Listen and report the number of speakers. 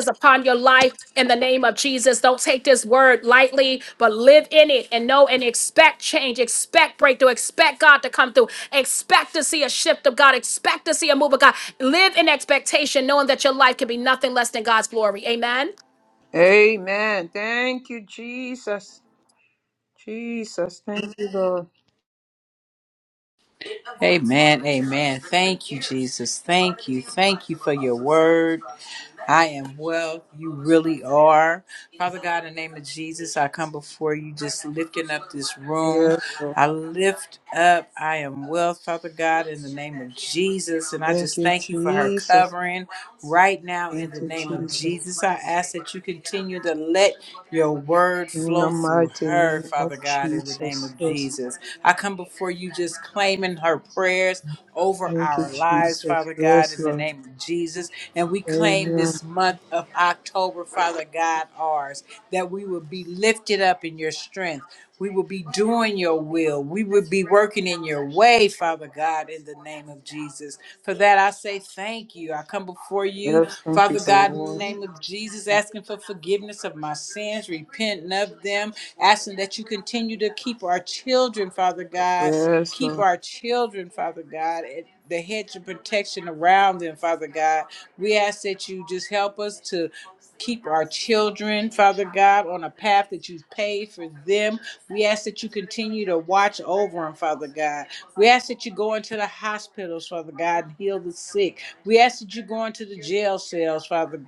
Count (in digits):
3